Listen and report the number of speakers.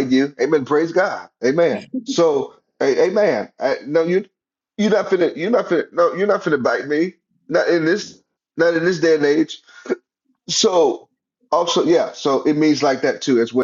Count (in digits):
1